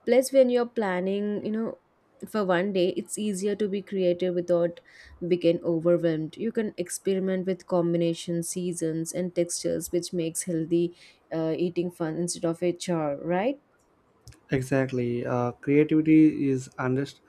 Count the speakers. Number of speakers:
2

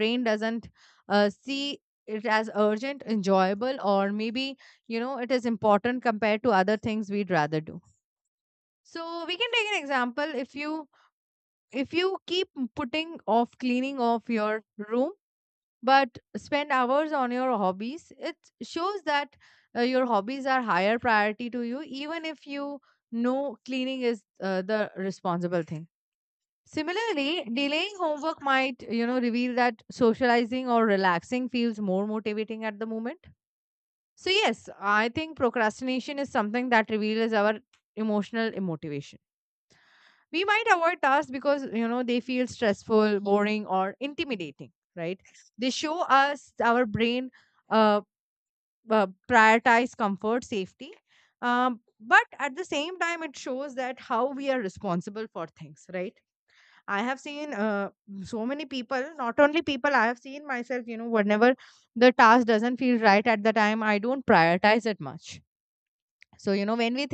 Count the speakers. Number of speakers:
1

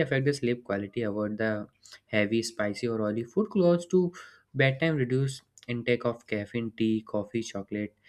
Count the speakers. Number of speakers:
1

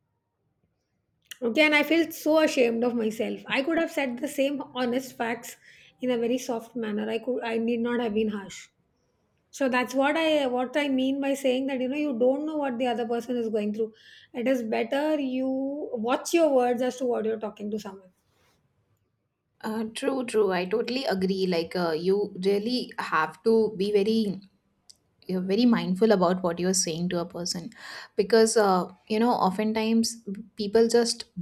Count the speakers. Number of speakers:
2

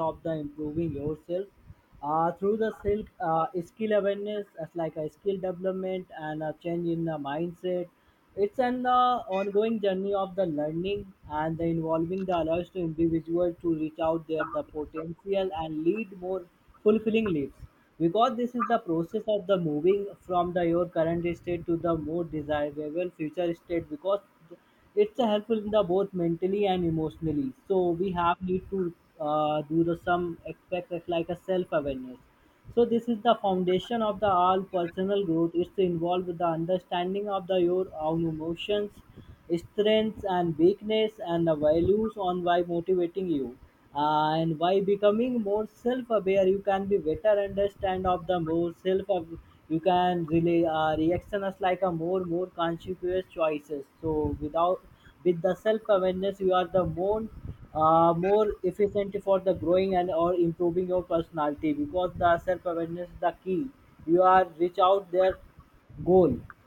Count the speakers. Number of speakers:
1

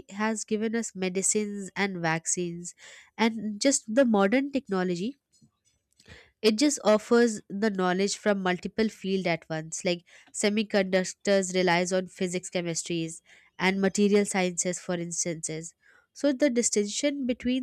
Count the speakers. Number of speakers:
1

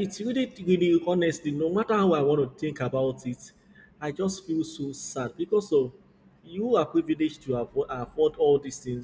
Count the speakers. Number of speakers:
1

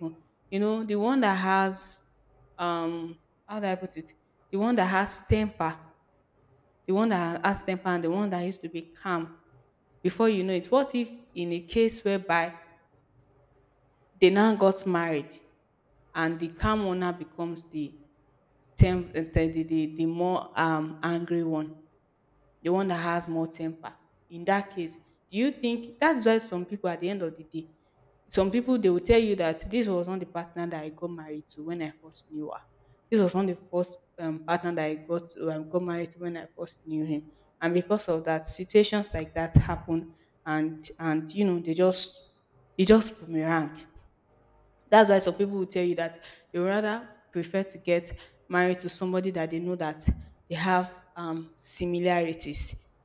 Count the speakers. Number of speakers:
1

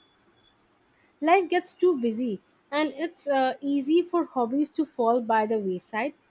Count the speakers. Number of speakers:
1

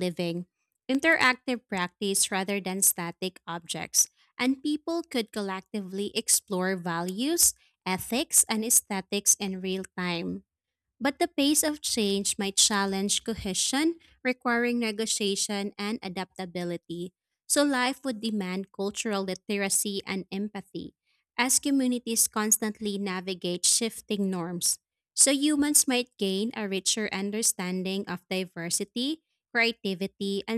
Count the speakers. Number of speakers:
1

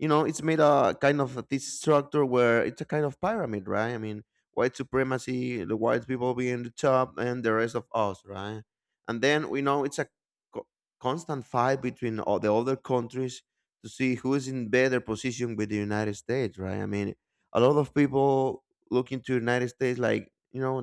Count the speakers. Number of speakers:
1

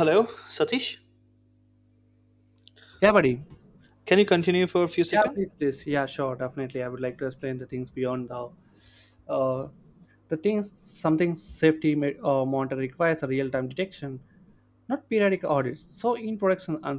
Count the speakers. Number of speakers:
2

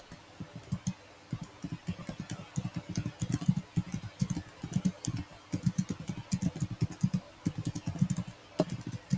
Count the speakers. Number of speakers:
0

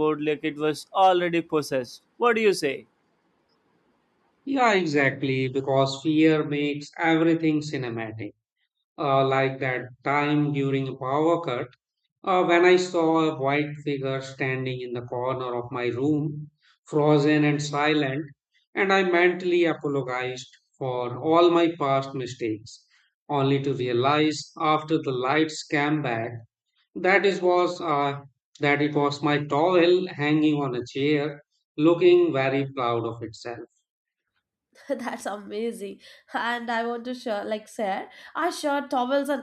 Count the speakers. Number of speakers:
3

